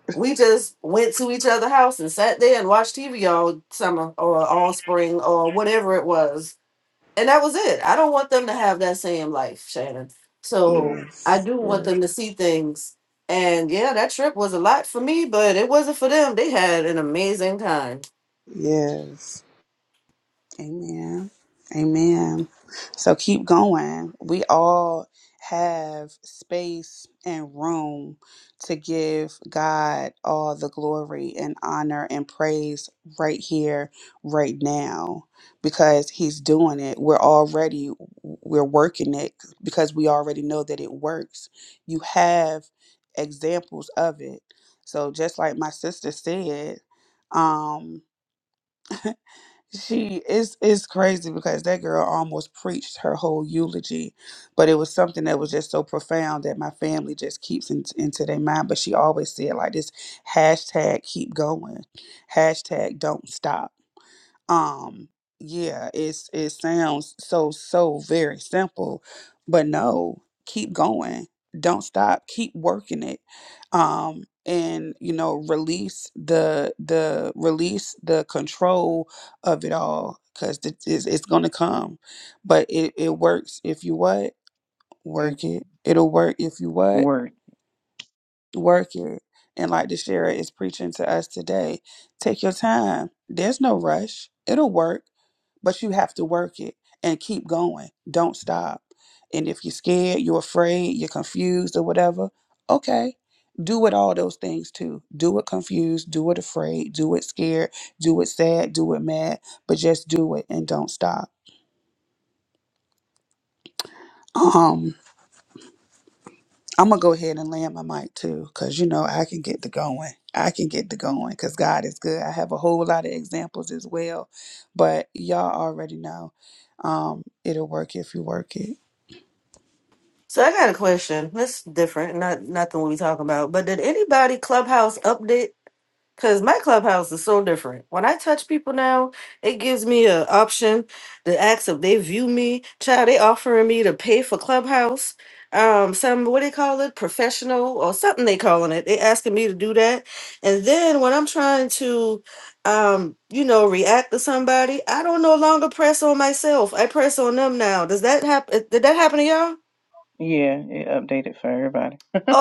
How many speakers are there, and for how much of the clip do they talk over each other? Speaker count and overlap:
four, about 1%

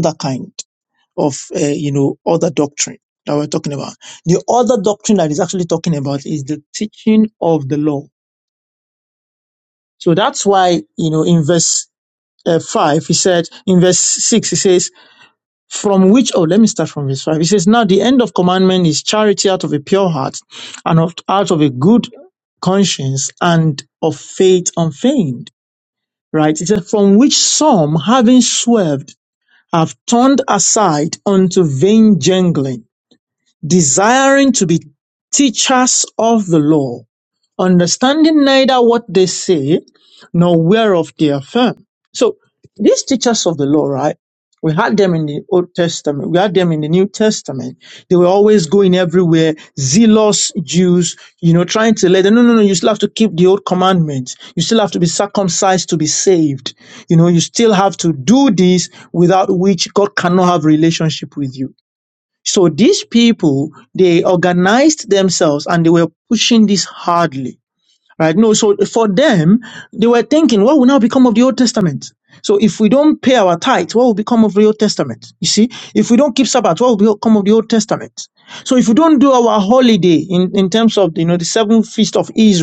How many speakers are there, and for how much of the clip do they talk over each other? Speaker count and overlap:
one, no overlap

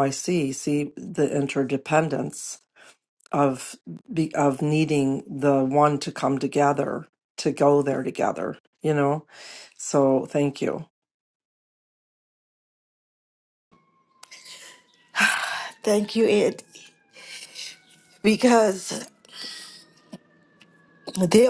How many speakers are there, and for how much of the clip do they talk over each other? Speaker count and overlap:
two, no overlap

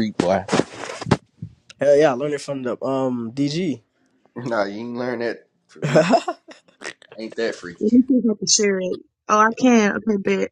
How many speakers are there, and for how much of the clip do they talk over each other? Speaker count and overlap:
three, no overlap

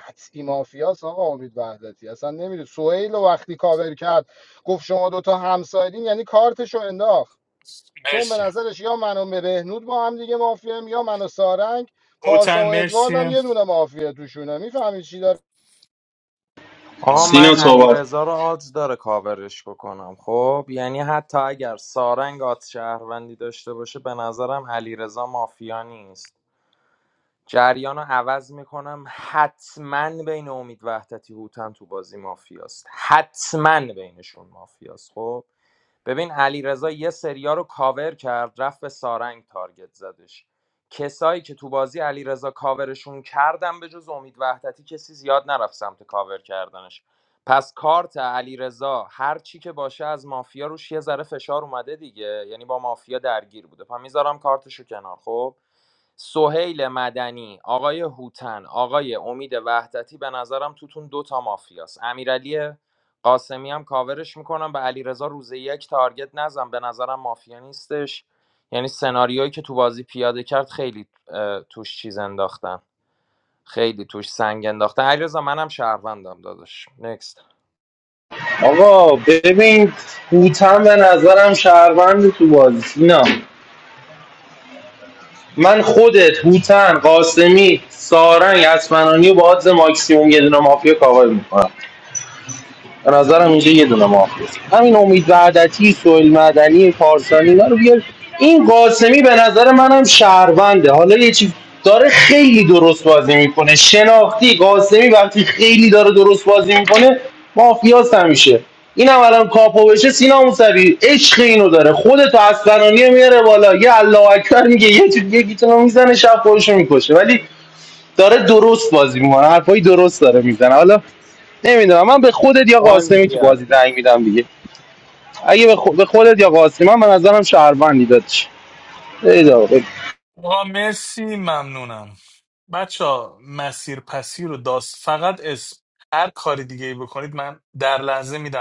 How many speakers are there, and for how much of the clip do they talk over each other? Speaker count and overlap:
four, about 2%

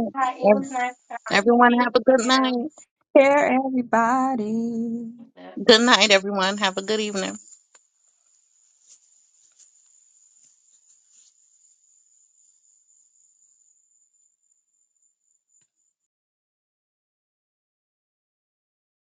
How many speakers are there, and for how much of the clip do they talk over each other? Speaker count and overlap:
three, about 5%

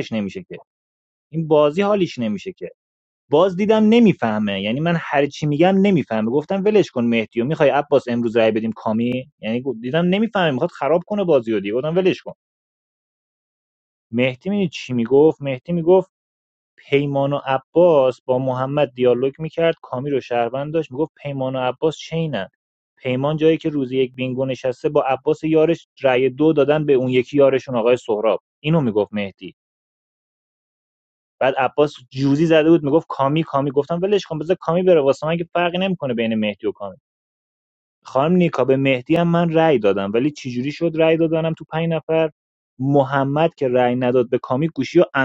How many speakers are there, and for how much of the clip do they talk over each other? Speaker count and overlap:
one, no overlap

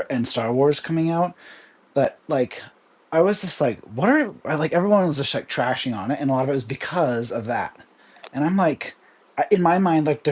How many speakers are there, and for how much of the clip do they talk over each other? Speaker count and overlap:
one, no overlap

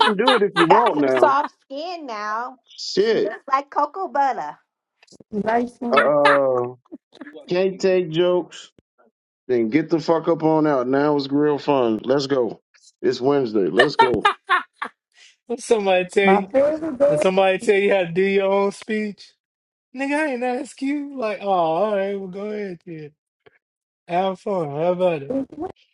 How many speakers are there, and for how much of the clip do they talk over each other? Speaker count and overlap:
four, about 5%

